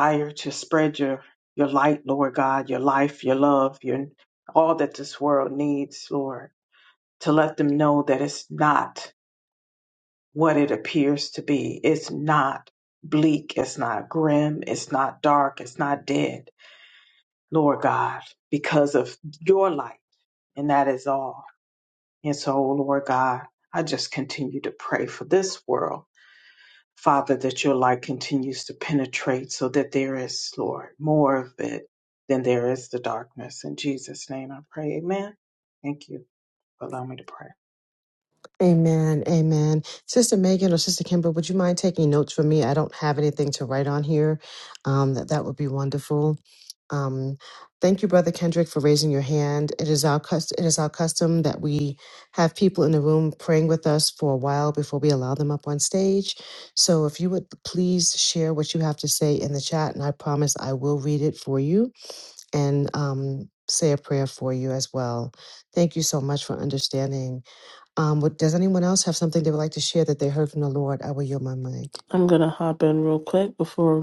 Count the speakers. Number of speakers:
3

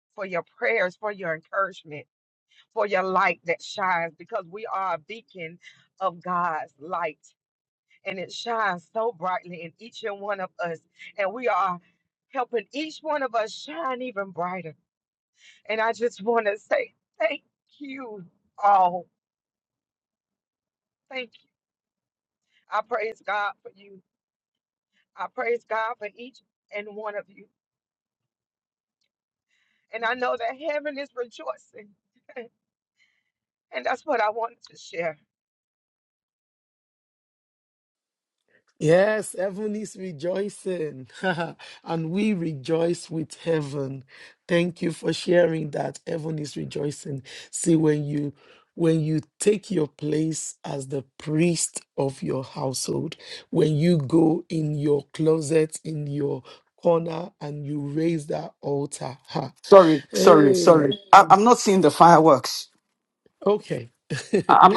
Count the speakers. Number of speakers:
3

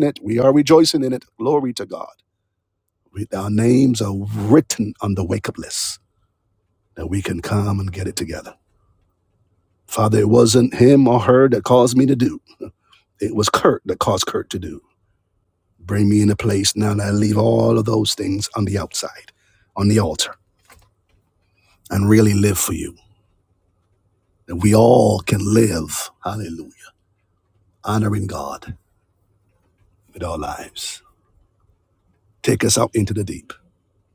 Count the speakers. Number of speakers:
1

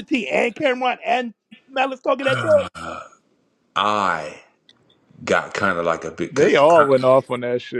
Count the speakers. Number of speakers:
3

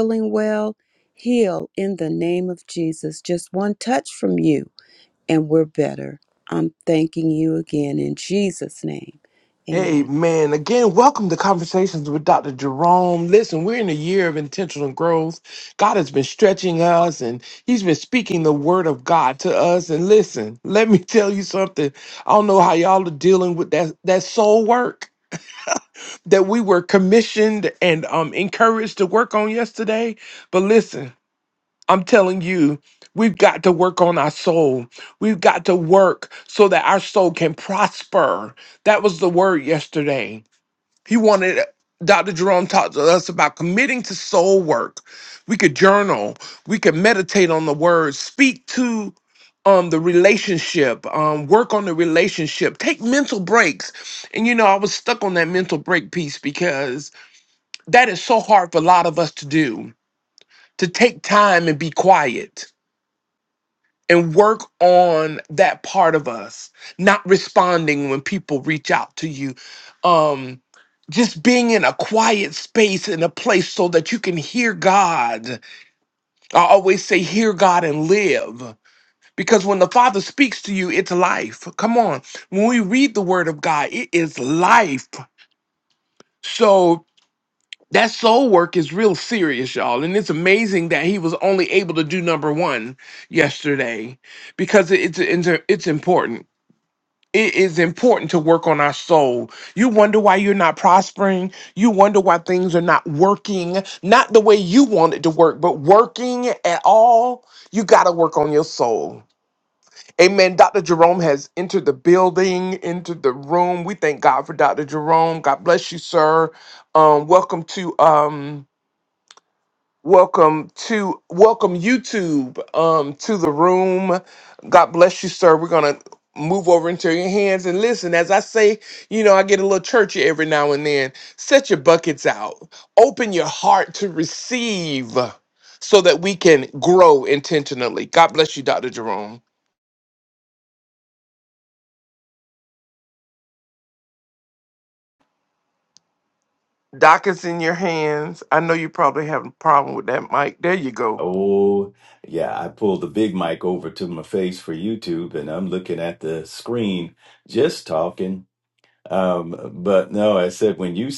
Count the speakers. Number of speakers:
3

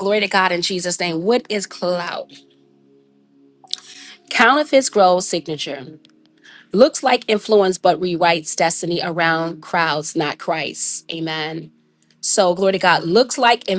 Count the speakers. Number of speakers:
1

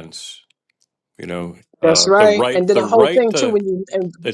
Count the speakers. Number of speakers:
2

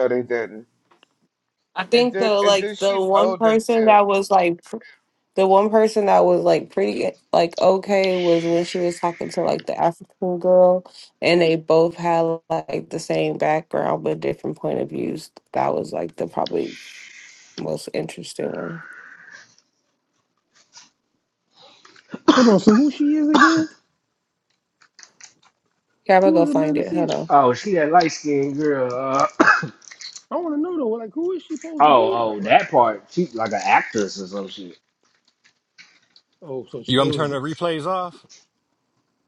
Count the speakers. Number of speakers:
5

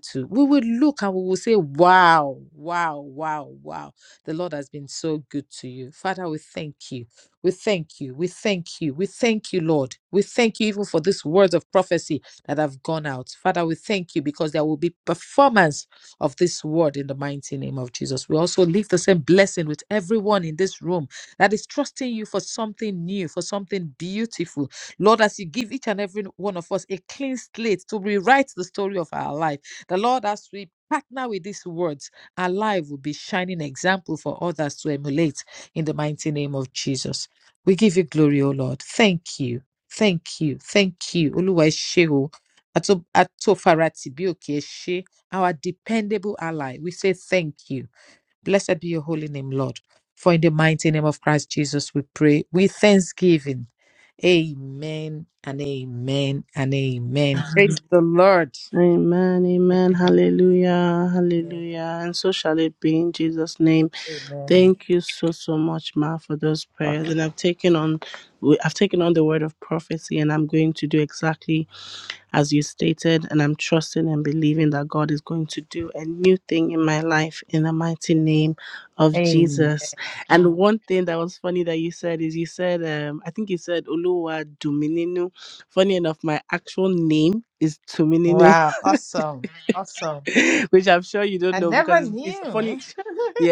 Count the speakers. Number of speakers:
2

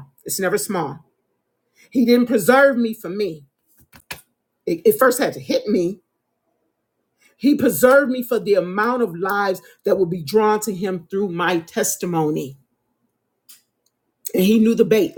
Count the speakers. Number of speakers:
1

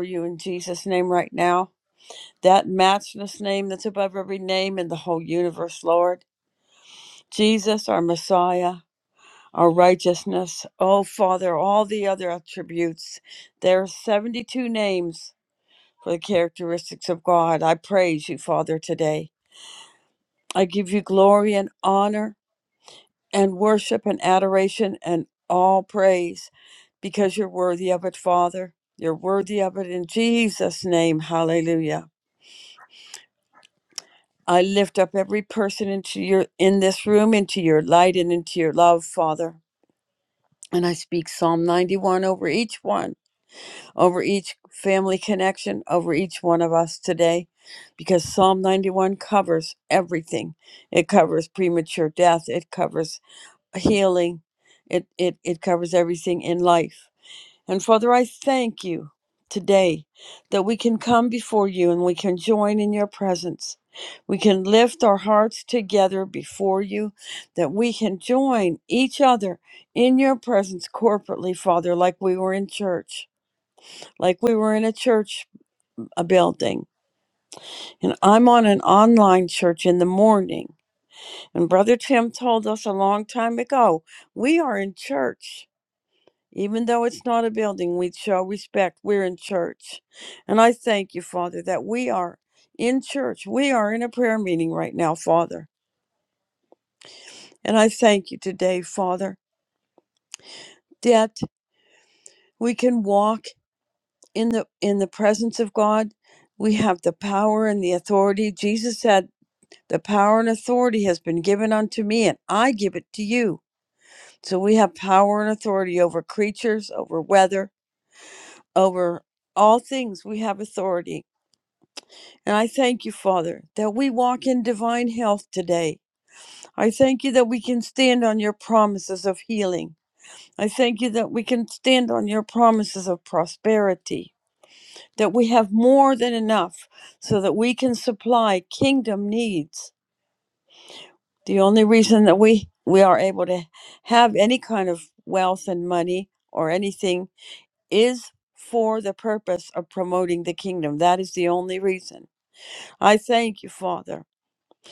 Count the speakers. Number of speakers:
1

